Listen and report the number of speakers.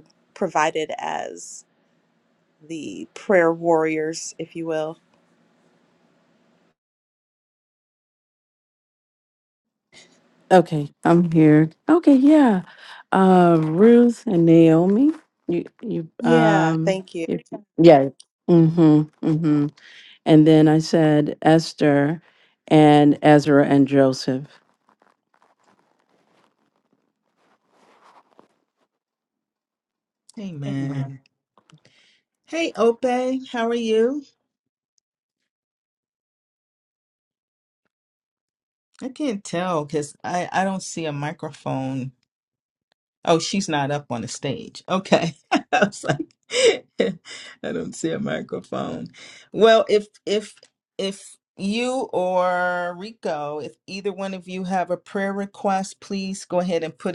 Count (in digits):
3